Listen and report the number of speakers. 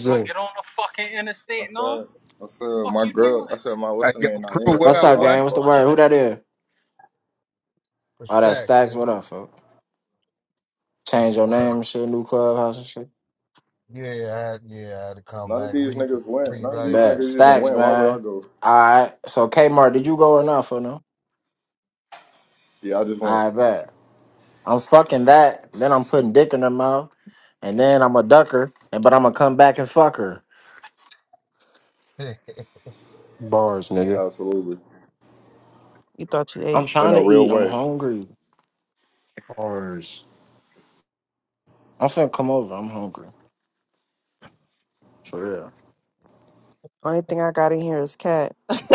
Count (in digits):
6